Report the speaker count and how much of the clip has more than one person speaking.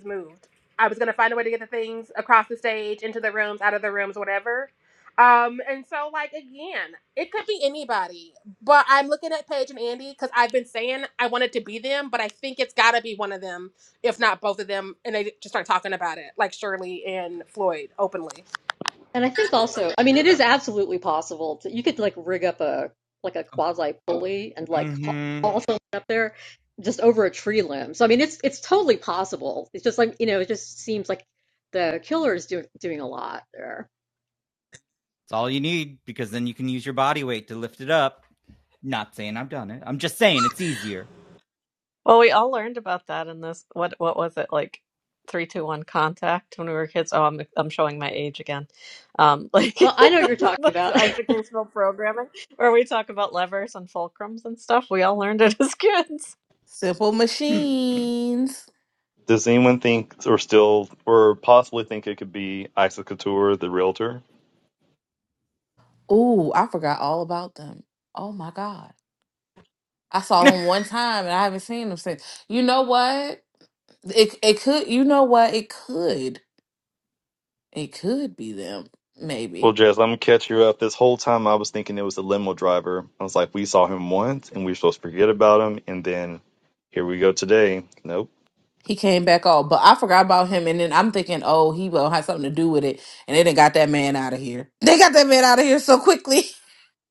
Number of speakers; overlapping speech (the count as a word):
six, about 1%